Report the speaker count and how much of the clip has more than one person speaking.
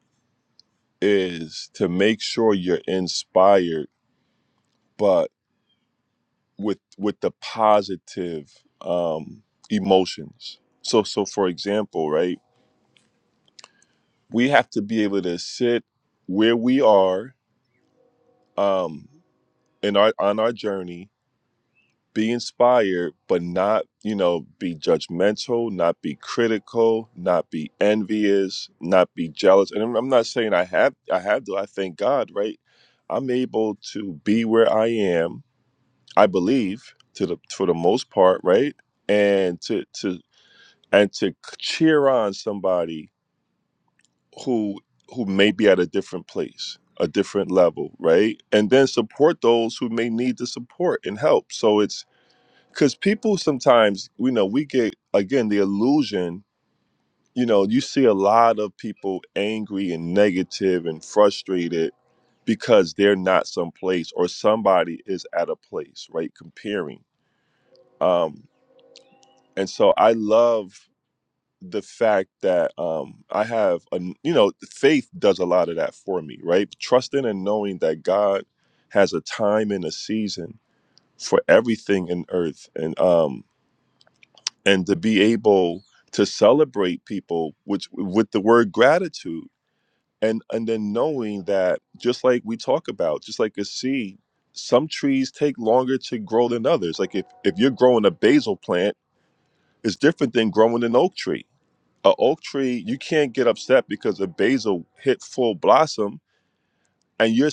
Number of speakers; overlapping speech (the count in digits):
1, no overlap